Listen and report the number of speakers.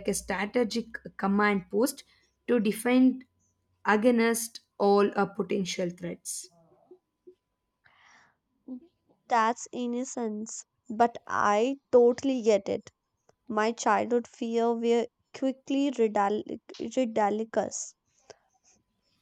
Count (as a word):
two